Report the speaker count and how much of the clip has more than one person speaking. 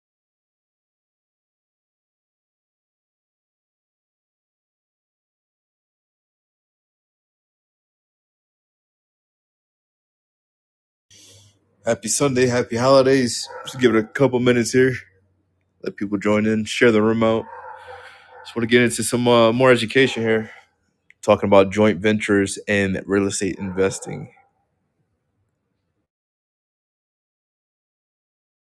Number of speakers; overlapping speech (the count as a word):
one, no overlap